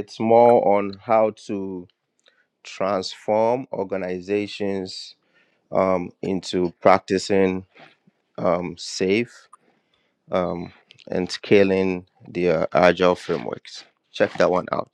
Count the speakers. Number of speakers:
1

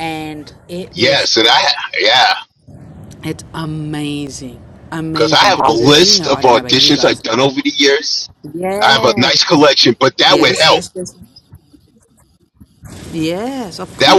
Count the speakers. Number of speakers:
2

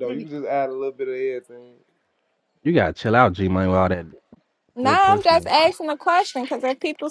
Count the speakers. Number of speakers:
3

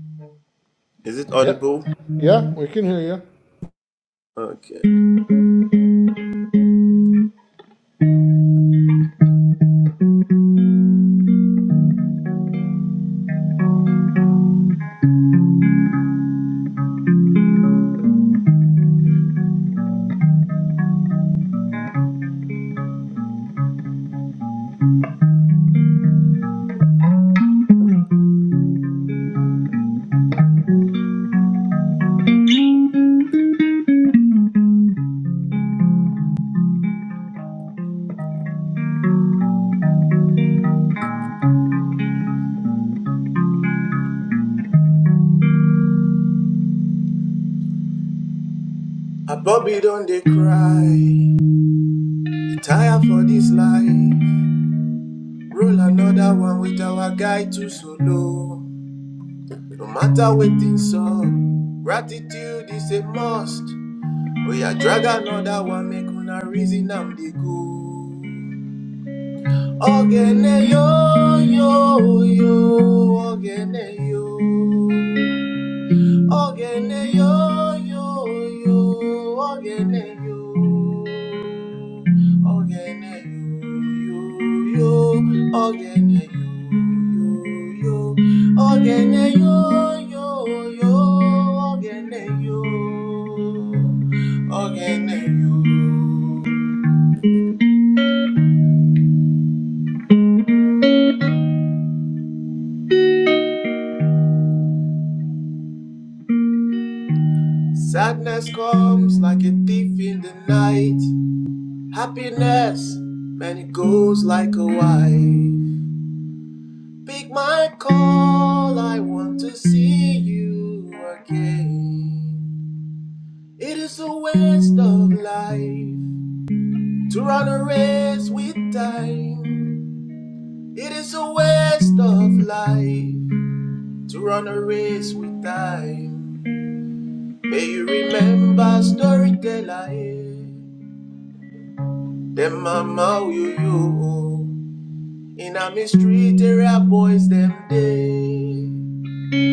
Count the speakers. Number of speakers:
2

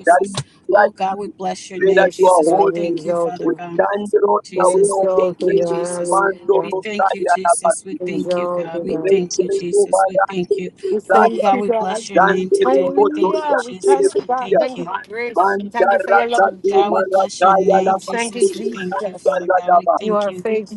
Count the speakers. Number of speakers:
3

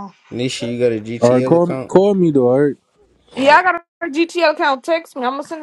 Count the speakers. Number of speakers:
3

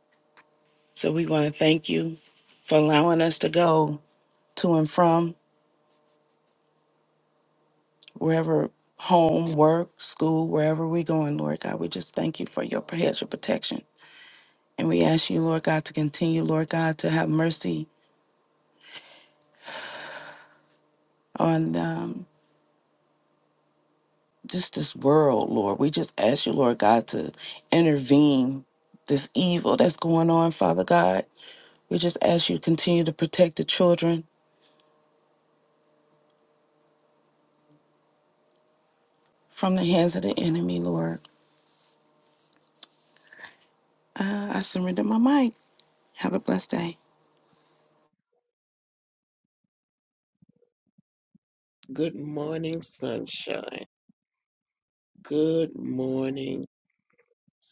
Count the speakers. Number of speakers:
2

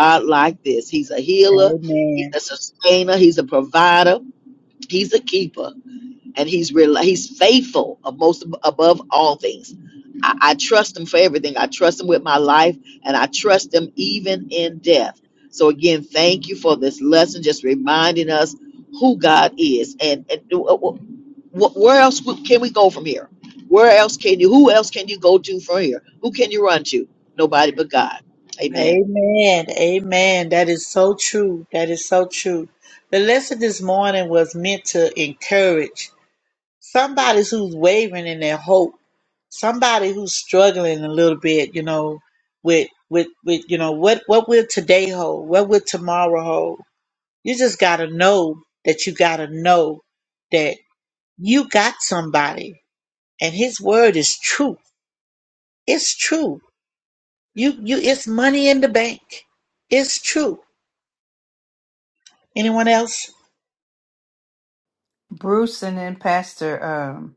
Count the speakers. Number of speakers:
3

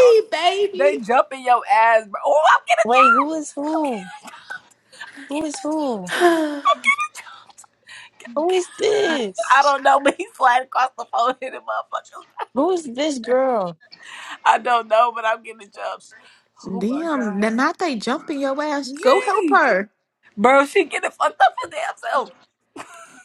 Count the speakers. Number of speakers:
3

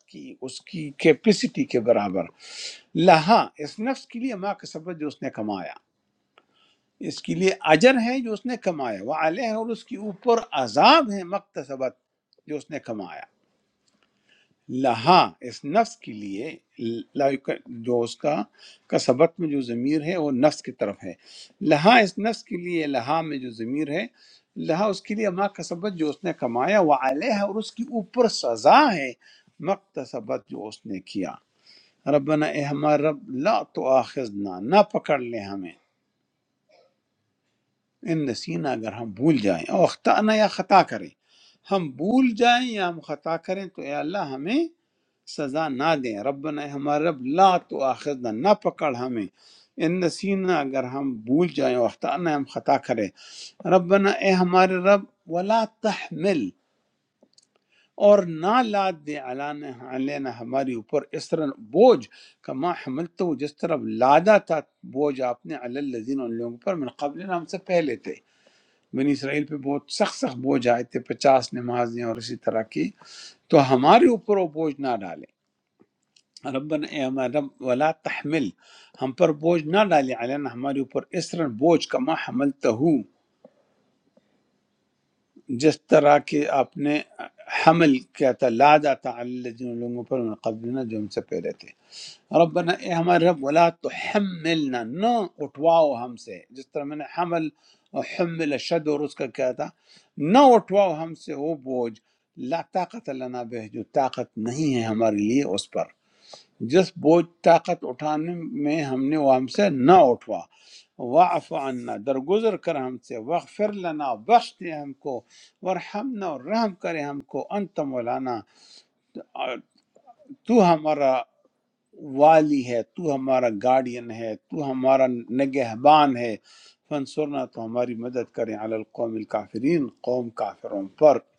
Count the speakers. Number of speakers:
1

